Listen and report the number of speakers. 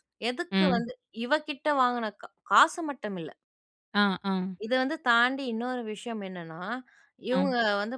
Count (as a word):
two